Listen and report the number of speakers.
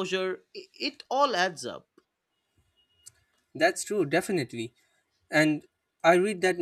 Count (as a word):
two